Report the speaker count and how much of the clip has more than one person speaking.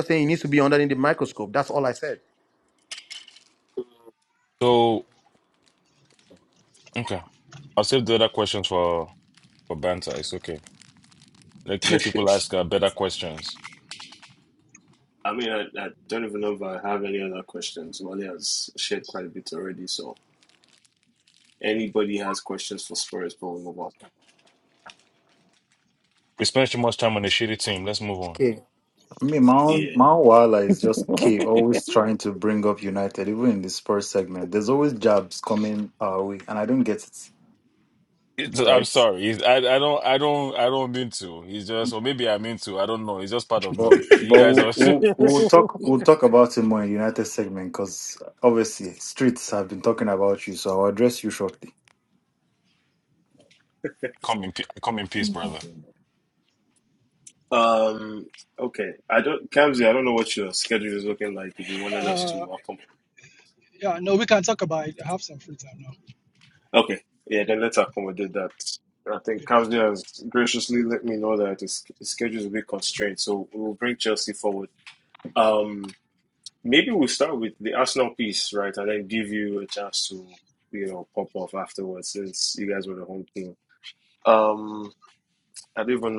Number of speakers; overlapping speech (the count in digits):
5, about 3%